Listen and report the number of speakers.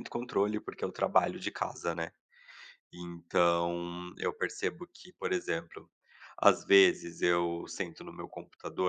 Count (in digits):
1